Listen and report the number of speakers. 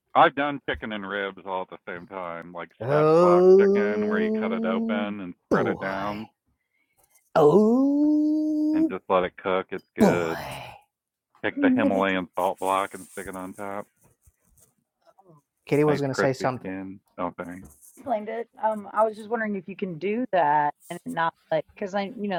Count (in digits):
3